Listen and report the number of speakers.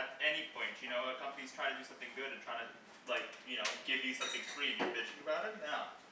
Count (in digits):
1